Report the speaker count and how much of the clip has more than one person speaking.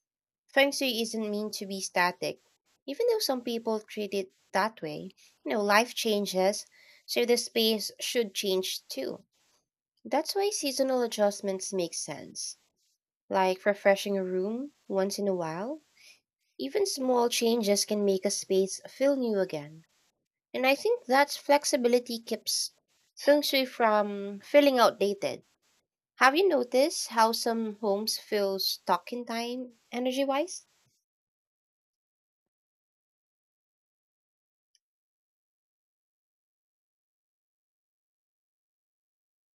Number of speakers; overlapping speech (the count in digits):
1, no overlap